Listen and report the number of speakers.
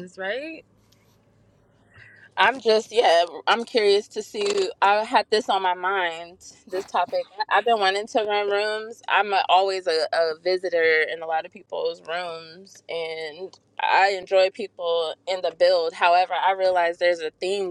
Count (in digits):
1